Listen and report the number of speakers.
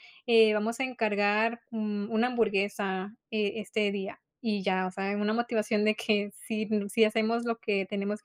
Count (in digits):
1